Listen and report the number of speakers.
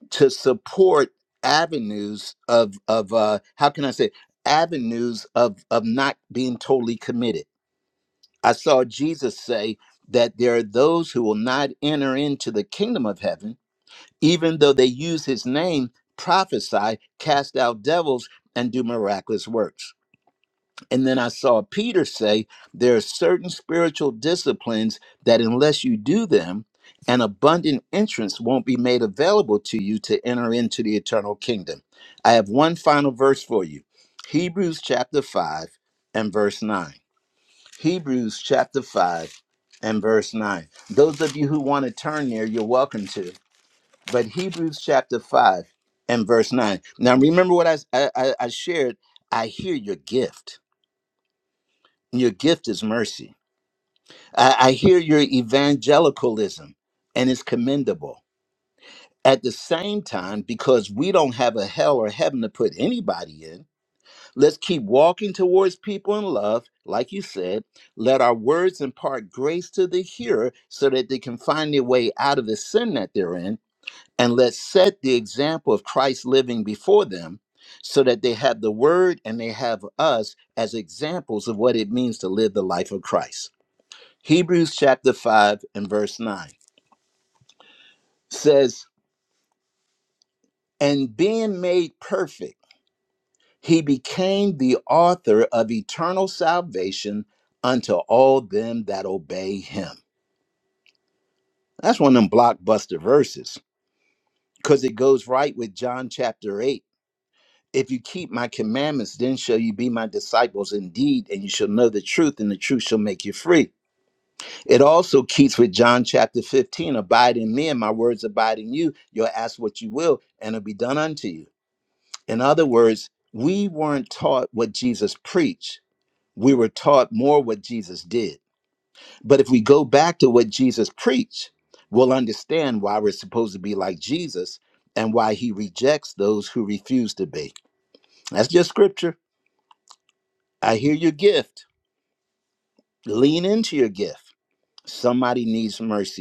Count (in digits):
1